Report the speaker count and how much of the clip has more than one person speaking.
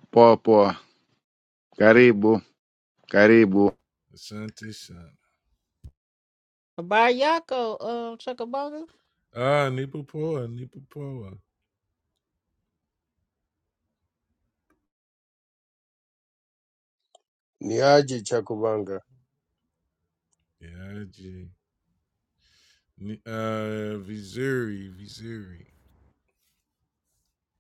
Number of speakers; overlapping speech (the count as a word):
four, no overlap